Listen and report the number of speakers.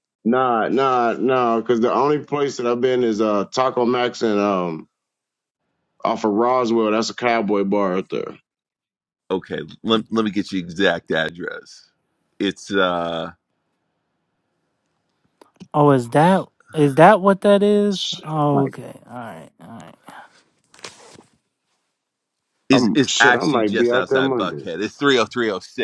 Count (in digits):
3